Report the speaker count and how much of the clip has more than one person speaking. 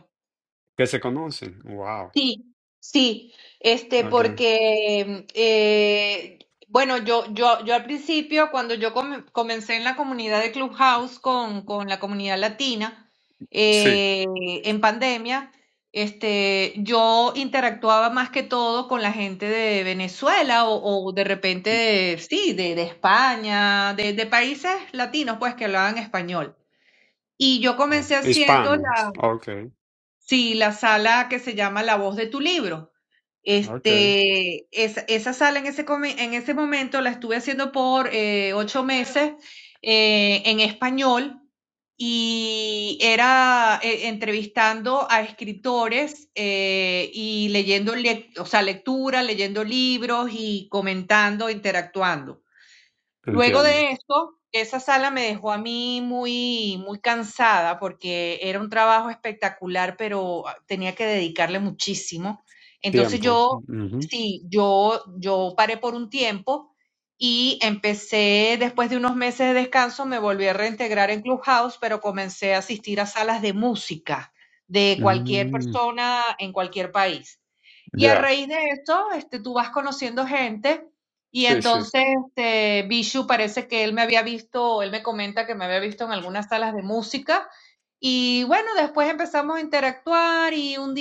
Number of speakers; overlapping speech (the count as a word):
two, about 5%